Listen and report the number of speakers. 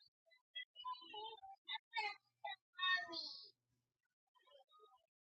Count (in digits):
0